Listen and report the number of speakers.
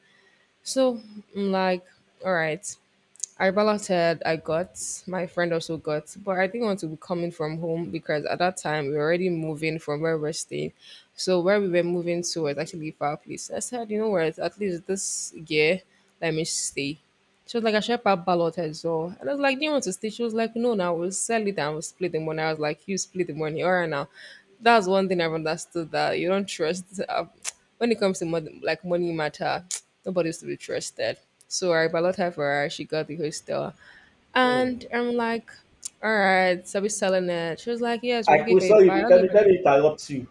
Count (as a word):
two